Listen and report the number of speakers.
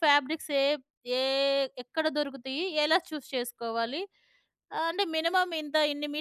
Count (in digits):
1